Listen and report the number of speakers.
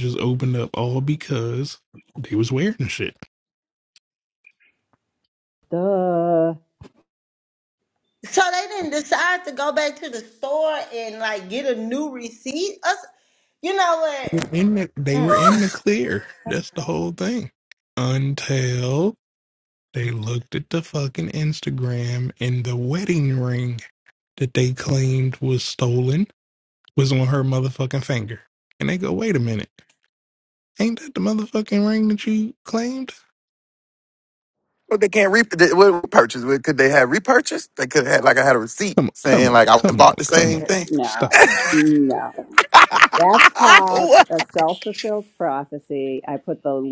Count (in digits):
4